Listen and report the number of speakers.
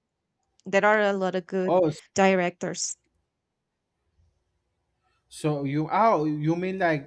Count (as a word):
two